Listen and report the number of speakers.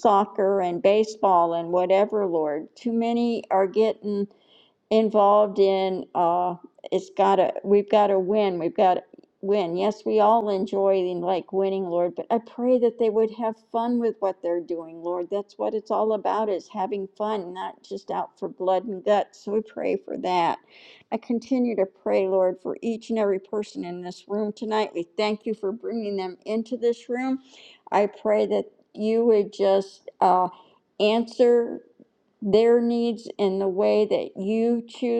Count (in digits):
1